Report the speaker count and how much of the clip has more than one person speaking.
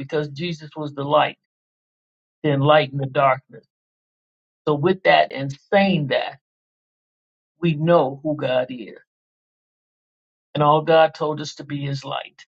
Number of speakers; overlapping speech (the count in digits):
1, no overlap